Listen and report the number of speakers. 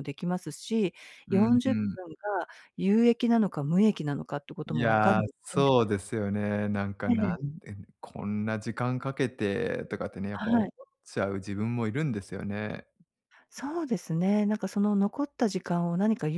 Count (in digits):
2